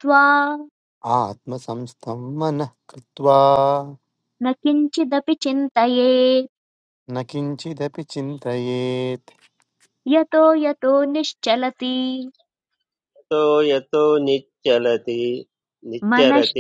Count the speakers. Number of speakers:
three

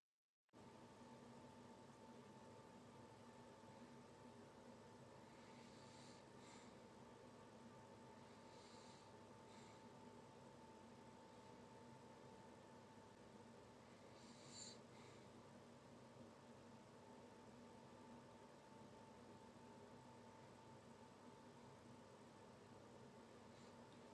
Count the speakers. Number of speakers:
zero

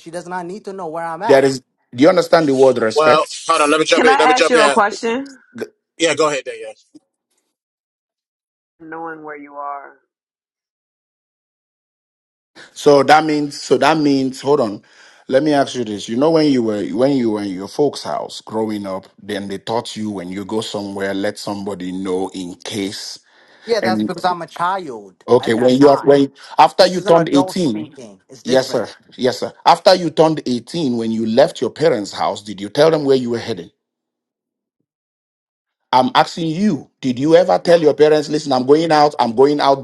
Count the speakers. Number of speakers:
four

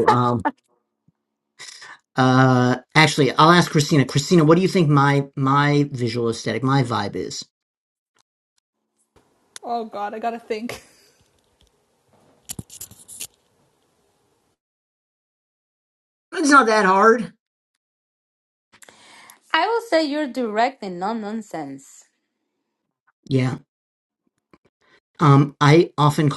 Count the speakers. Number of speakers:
three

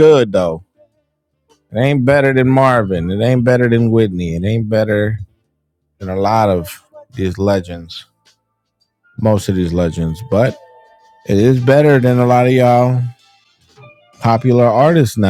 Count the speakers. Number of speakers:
one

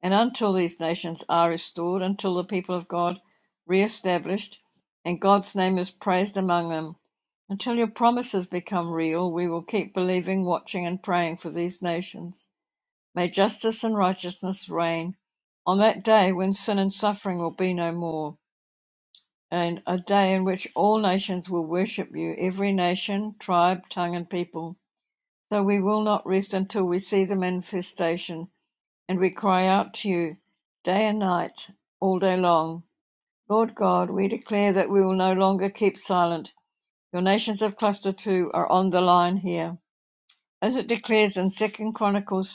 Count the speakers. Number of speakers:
one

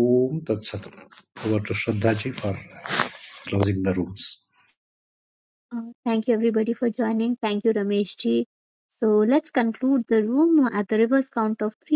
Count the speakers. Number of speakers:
two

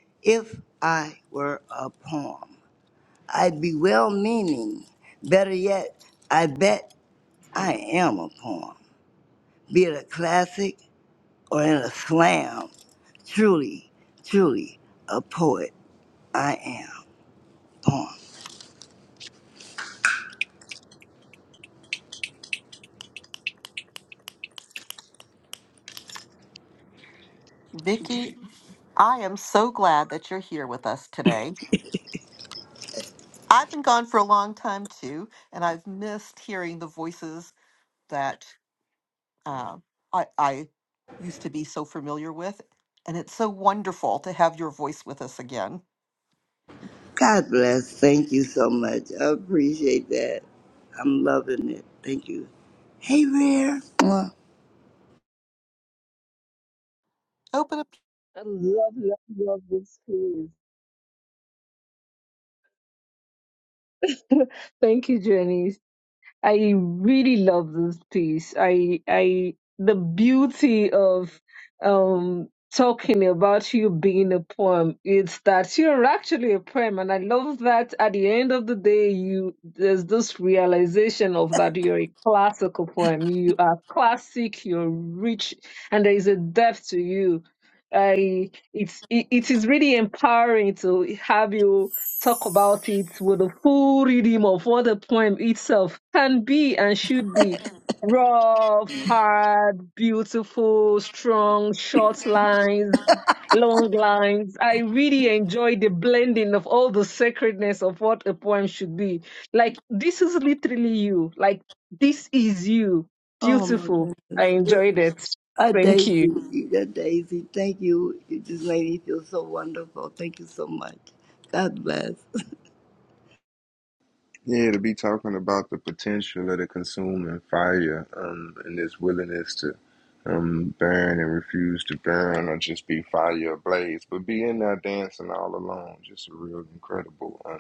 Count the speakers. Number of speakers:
four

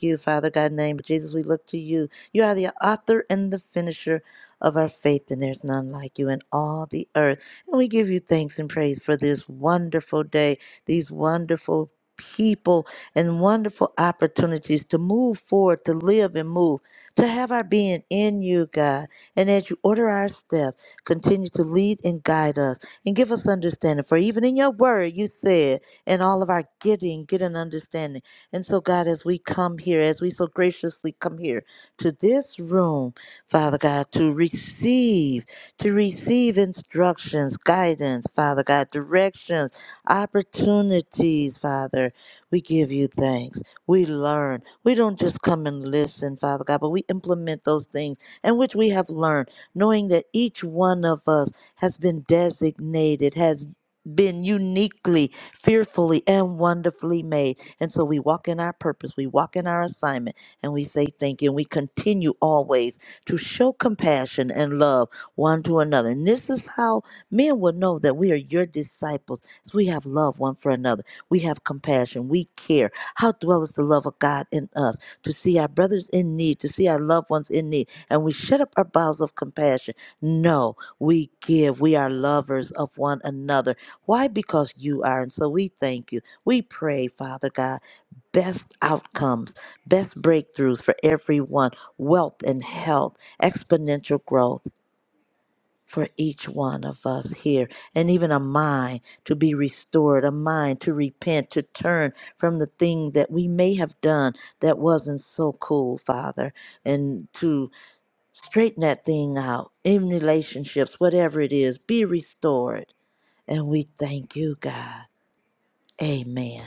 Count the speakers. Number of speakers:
one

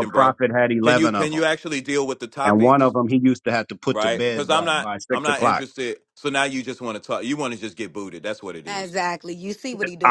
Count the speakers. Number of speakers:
three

